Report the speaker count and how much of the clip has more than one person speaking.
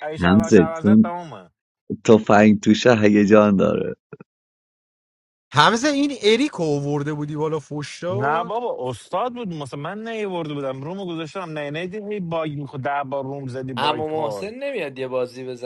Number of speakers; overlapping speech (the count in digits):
4, about 13%